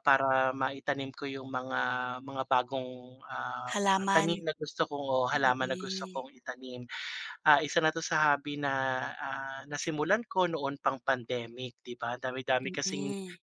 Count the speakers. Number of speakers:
2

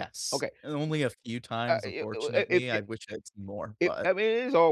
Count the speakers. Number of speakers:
2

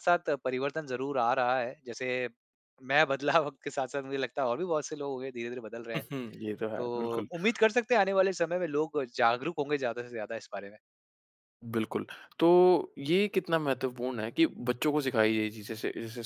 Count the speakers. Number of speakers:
2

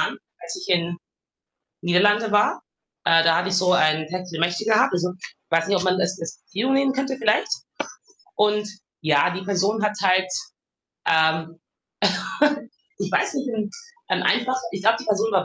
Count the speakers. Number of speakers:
1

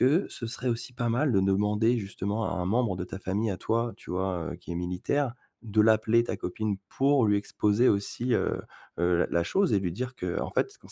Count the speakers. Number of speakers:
1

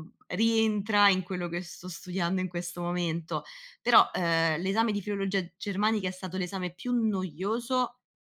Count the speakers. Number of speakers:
1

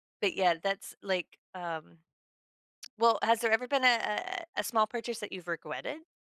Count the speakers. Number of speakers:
1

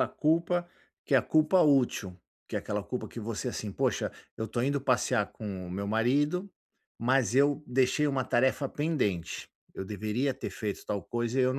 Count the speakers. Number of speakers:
1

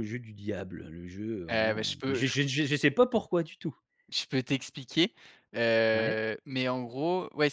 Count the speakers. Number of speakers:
2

